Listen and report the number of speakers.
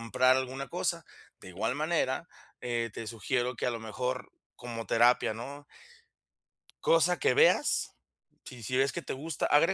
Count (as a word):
one